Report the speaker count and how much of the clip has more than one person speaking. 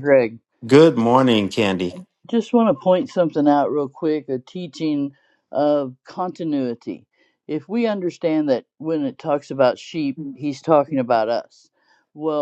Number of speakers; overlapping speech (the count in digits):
2, no overlap